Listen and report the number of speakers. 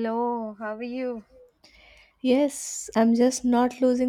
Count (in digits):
2